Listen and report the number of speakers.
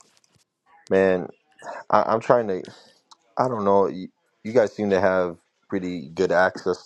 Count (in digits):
1